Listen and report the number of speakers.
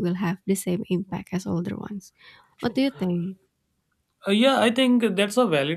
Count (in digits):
2